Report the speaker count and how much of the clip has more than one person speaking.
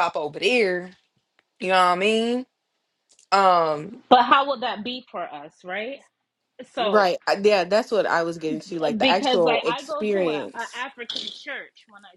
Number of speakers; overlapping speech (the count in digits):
3, about 16%